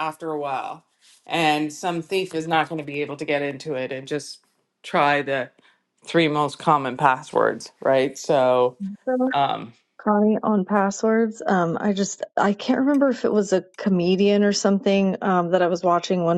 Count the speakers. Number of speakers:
2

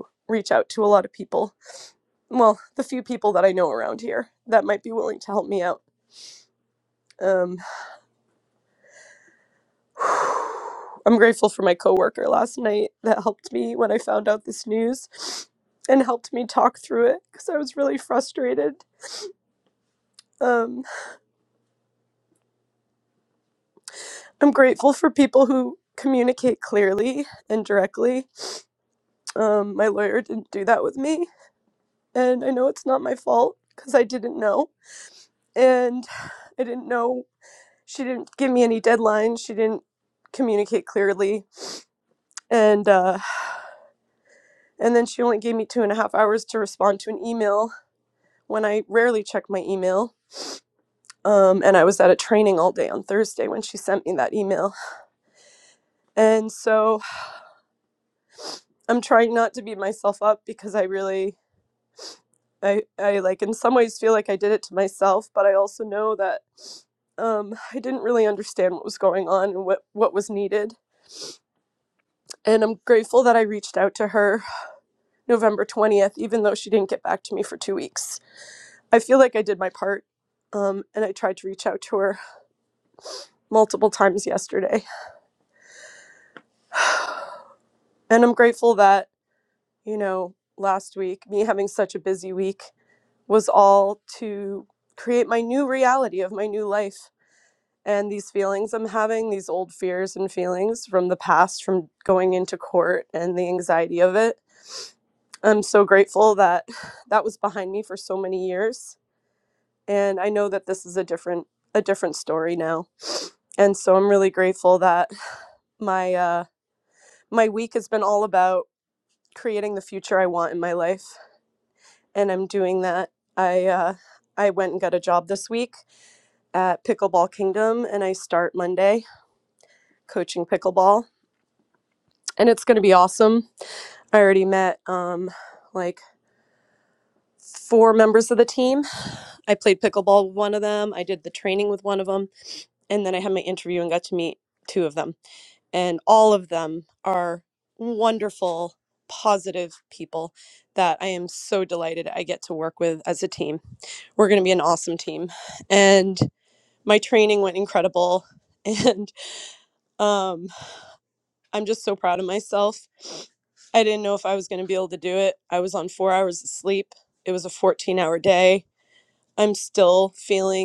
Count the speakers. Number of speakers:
1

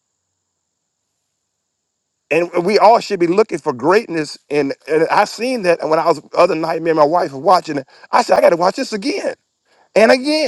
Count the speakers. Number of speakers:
1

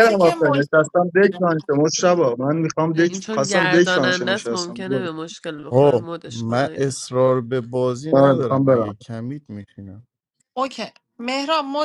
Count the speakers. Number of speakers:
4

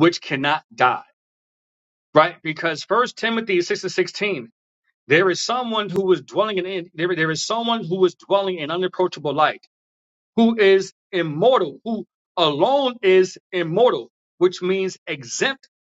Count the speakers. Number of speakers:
1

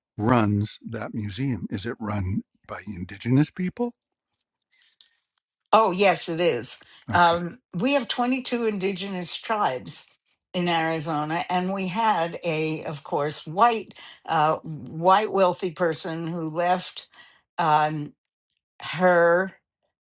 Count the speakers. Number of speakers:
2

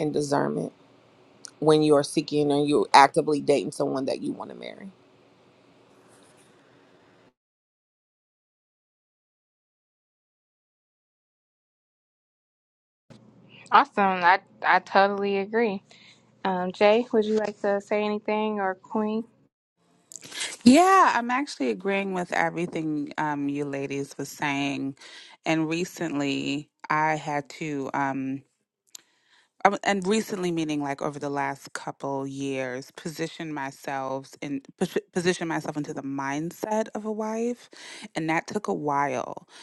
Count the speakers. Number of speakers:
3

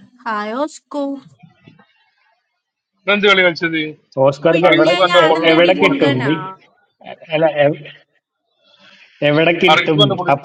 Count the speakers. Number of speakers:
3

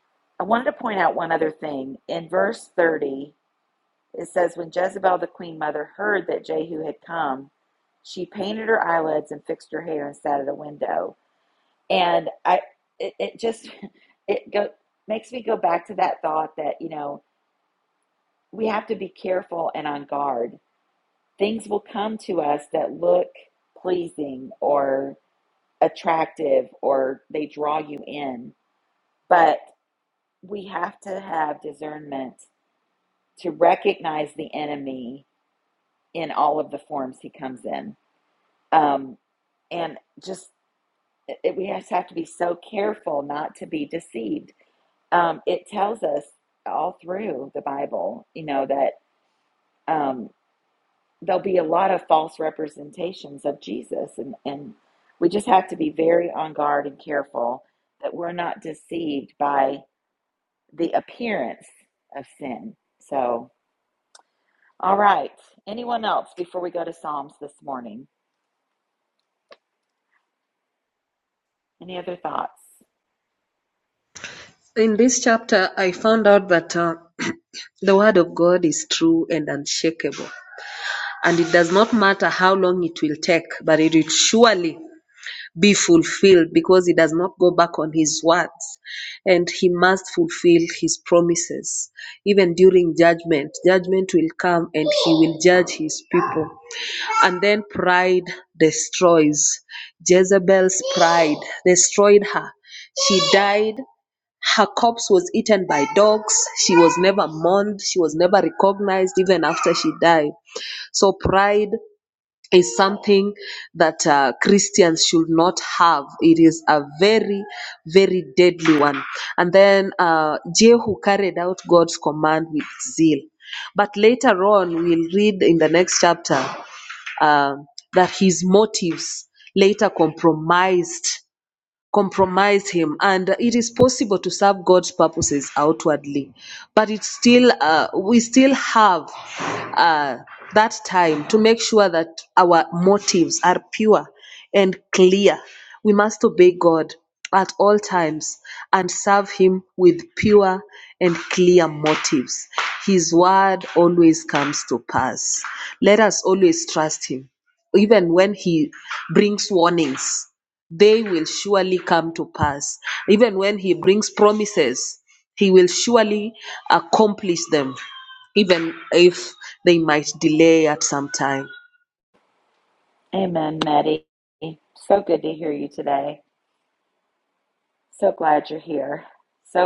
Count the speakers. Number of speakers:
2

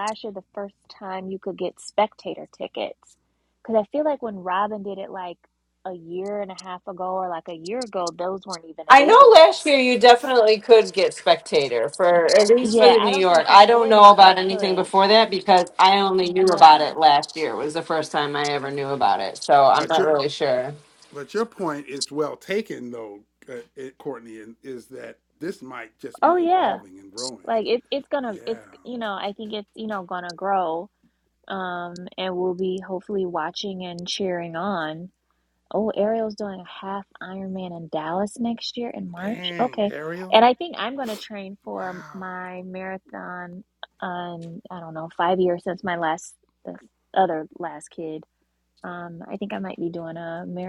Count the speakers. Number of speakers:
3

